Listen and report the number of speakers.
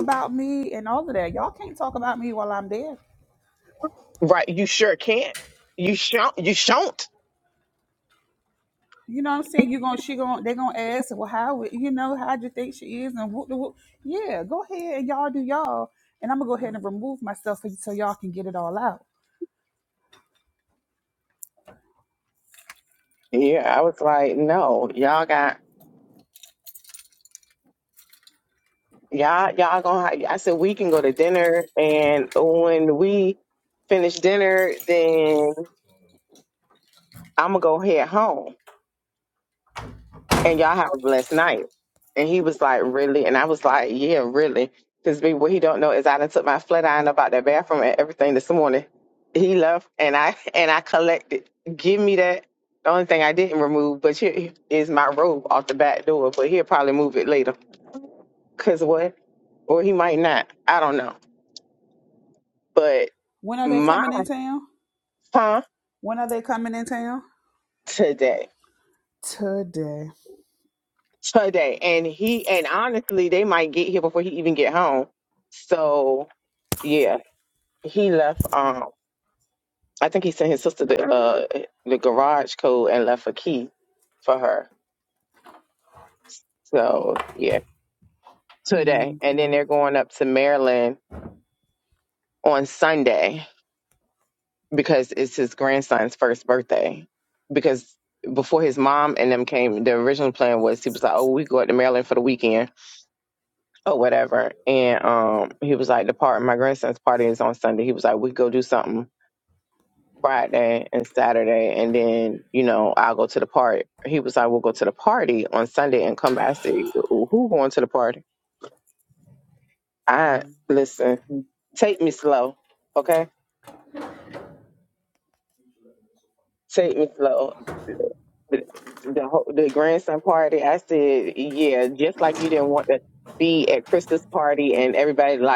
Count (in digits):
2